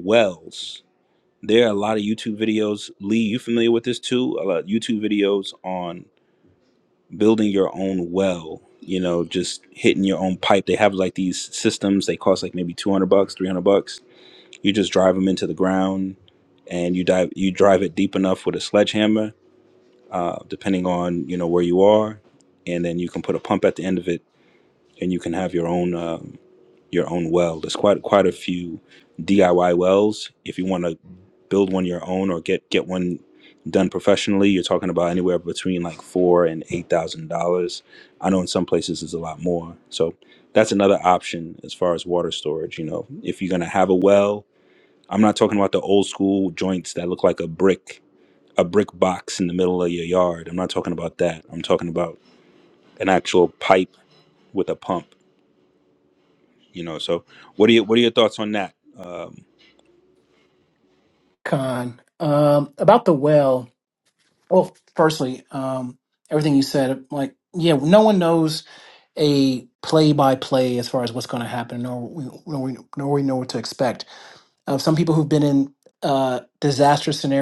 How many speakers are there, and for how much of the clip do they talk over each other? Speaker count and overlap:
2, no overlap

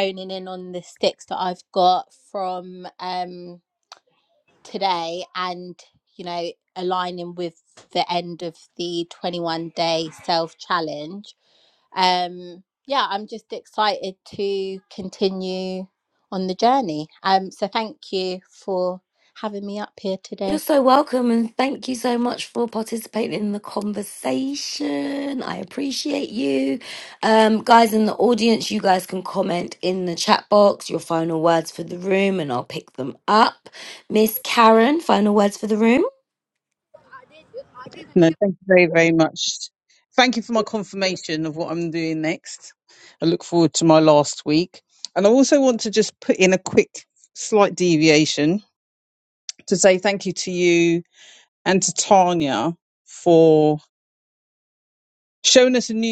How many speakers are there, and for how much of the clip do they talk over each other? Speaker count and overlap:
3, under 1%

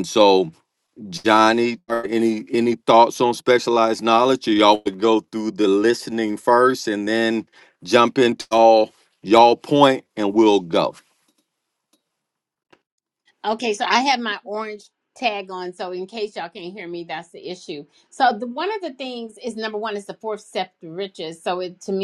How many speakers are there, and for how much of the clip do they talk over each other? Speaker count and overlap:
2, no overlap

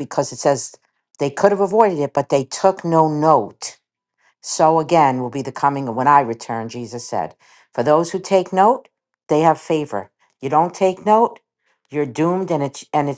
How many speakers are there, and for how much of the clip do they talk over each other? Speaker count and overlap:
1, no overlap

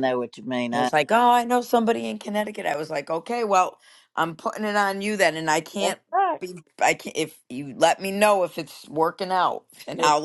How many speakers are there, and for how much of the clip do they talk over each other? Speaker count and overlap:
2, about 3%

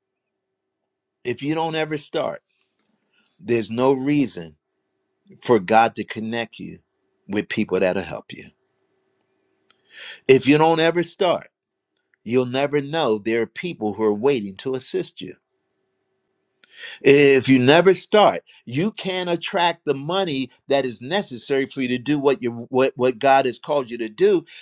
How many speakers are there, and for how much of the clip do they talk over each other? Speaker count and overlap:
1, no overlap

